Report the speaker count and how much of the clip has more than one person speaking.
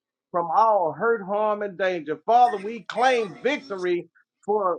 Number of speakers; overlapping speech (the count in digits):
1, no overlap